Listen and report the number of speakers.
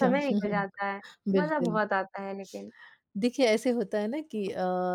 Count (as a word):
two